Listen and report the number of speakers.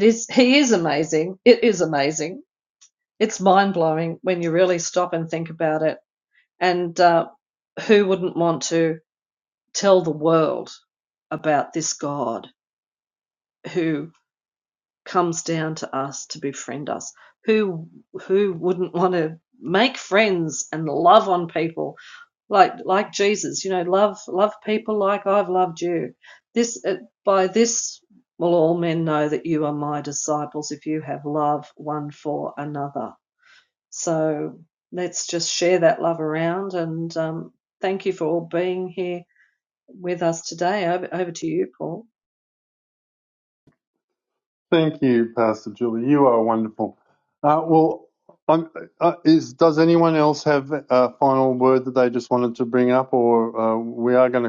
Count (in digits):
2